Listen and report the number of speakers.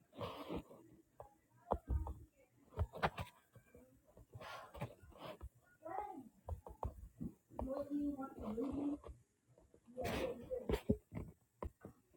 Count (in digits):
0